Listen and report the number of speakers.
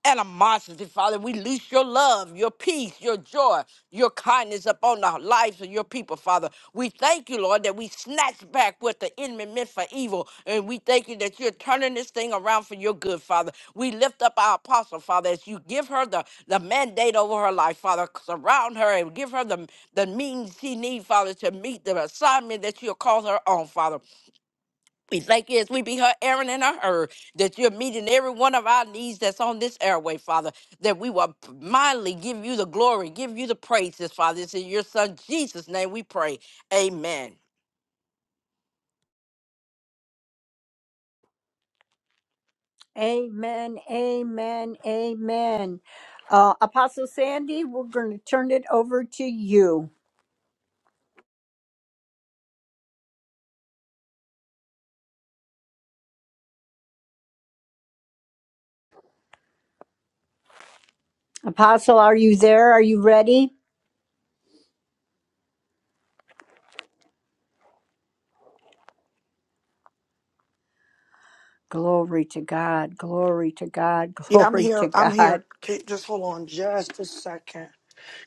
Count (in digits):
3